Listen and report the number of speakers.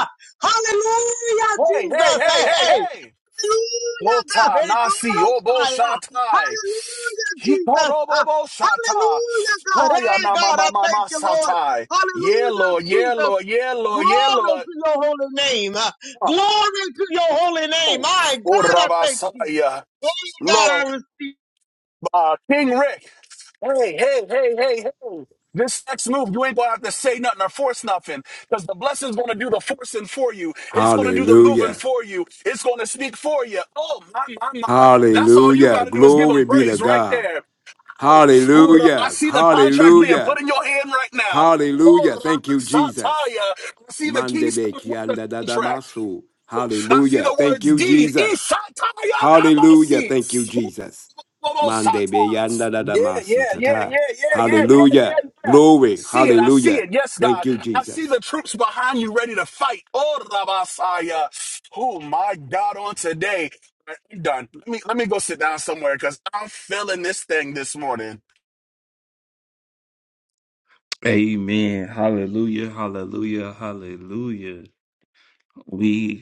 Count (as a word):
four